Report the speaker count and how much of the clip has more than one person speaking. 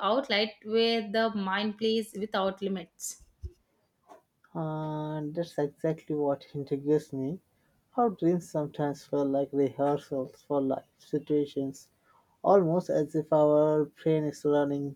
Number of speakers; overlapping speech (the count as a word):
two, no overlap